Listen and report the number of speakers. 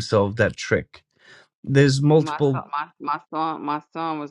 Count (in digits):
2